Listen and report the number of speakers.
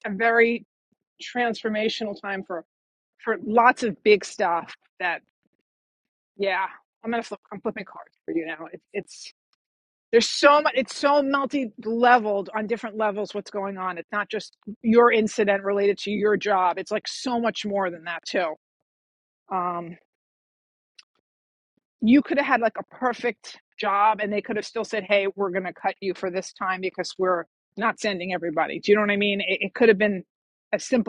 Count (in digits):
1